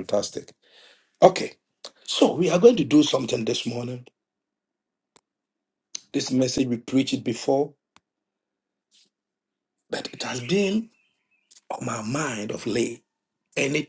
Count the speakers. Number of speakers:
one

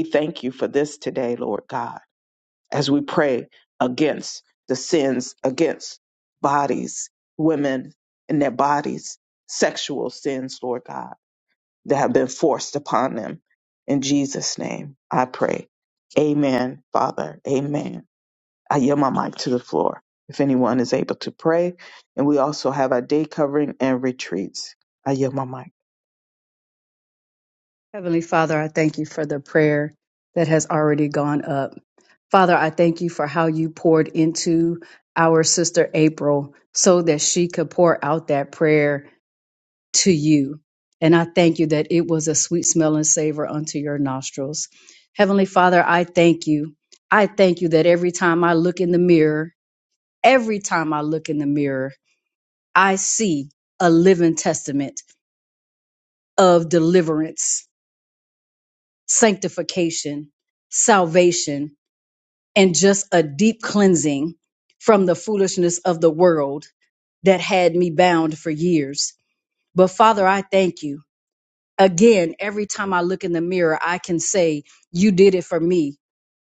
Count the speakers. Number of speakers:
two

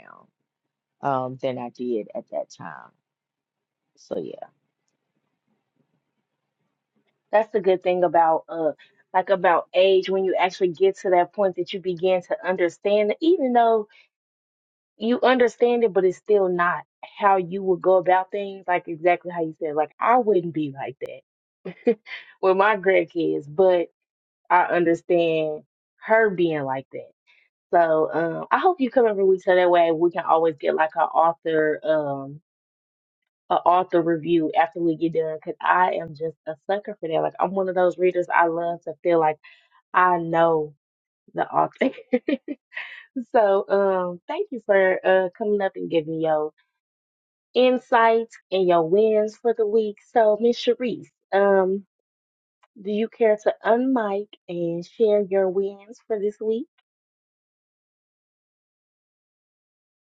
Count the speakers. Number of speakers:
two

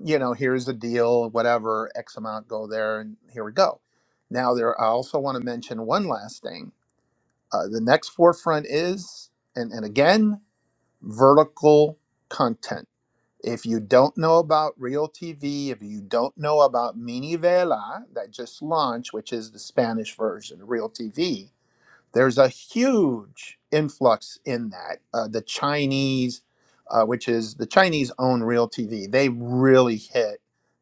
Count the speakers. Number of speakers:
one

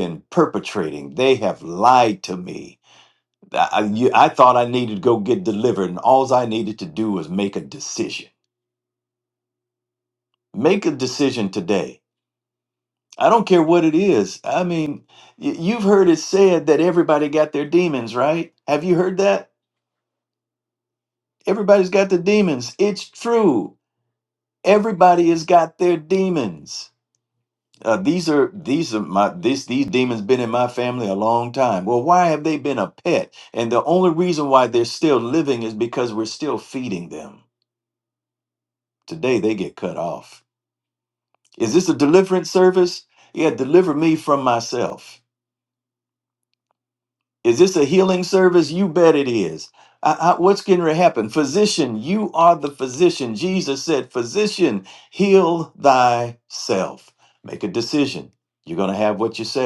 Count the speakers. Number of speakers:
one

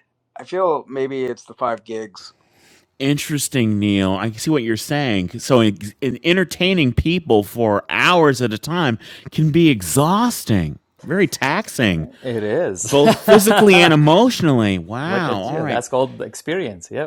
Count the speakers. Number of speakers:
three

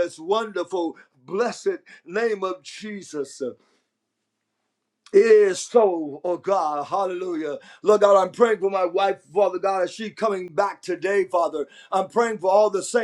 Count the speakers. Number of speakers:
one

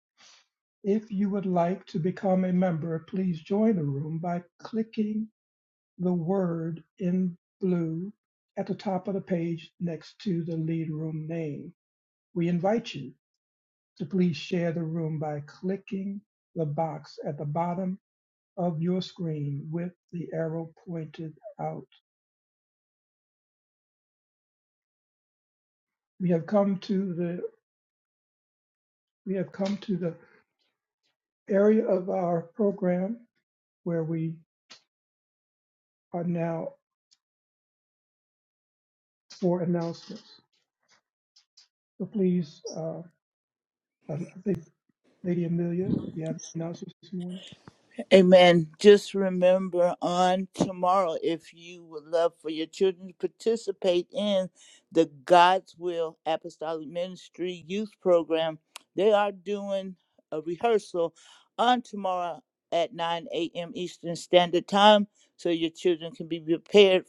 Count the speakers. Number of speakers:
two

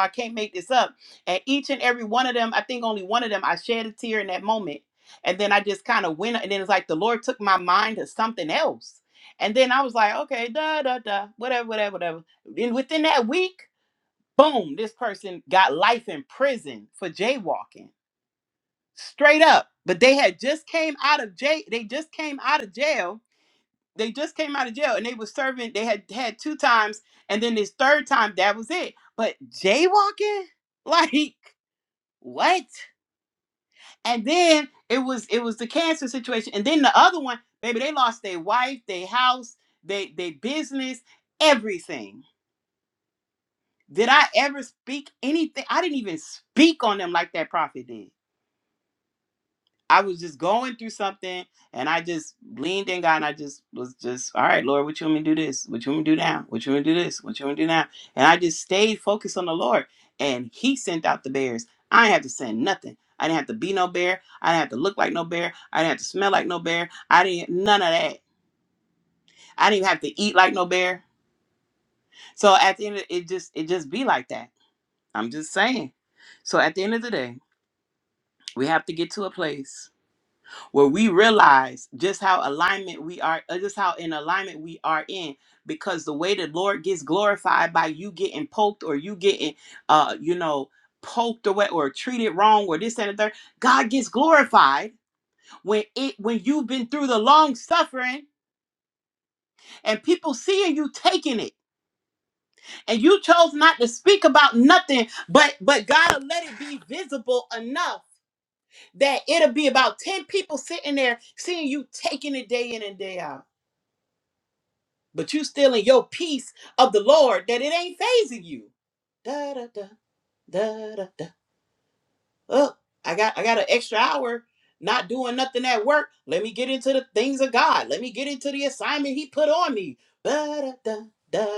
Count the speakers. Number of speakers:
one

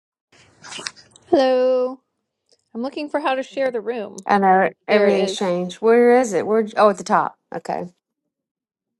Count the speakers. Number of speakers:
two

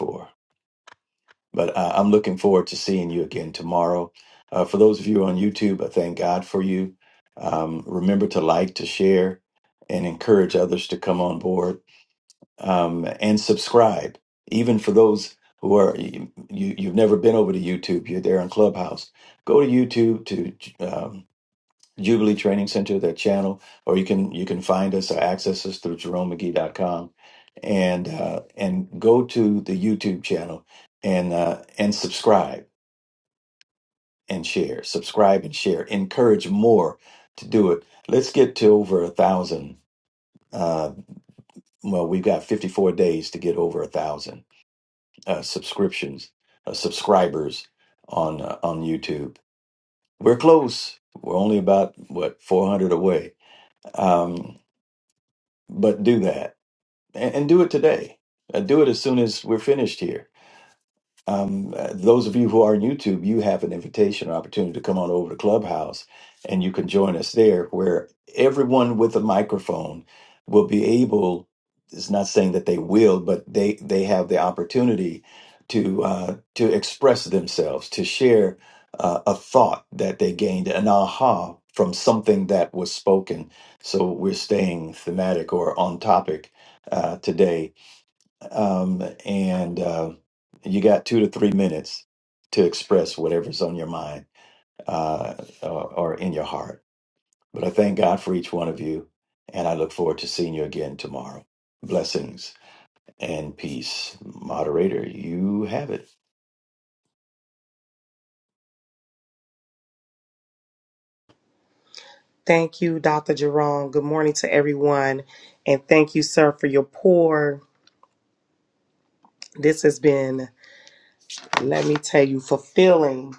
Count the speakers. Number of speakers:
two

